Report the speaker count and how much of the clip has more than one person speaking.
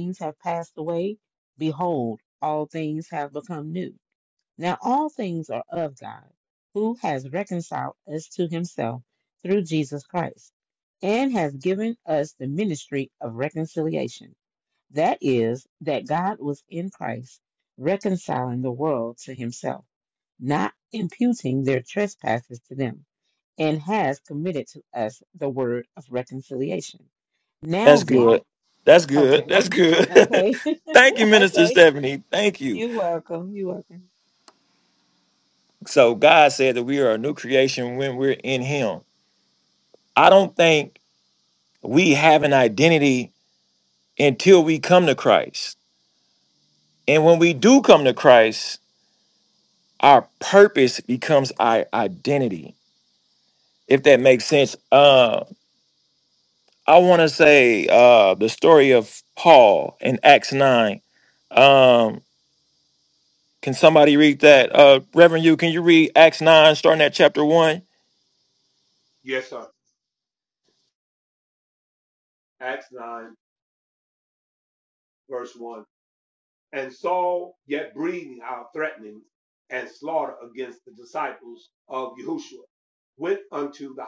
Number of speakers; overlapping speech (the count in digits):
3, about 2%